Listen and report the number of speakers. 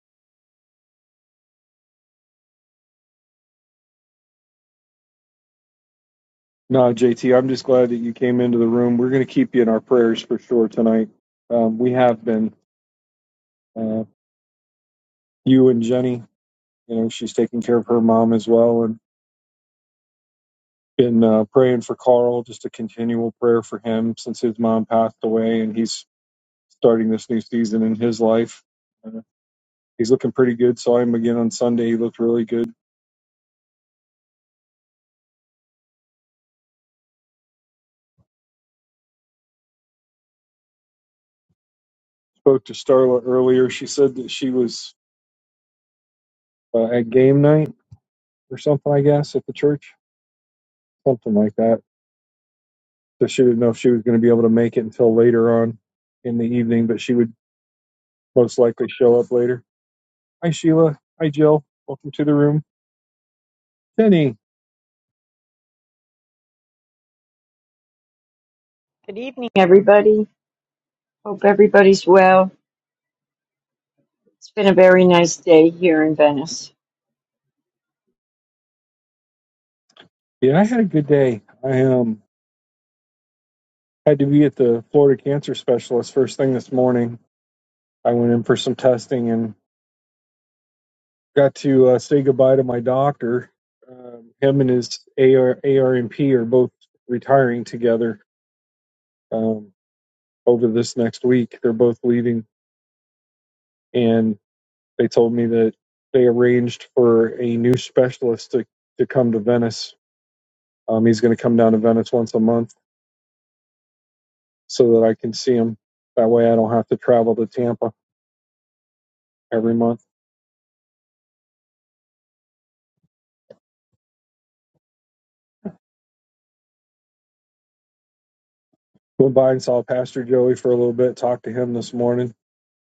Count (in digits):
2